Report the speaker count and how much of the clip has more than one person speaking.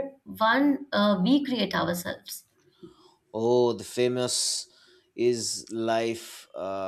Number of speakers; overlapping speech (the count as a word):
two, no overlap